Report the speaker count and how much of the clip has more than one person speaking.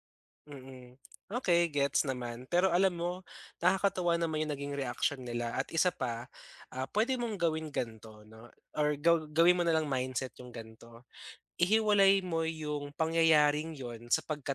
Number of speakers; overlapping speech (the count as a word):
one, no overlap